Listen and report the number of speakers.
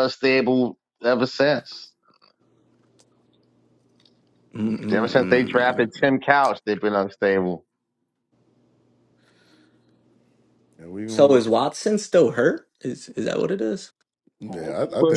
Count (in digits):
3